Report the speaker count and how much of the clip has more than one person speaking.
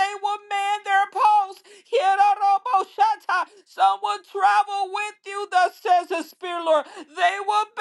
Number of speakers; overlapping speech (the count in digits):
1, no overlap